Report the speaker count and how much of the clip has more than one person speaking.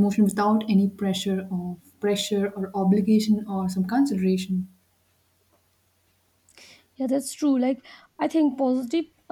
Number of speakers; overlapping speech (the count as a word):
two, no overlap